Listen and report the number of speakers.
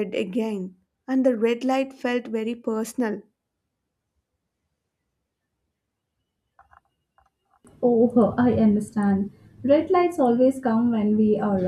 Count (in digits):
2